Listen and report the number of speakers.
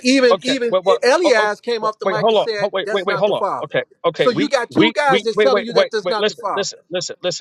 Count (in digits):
2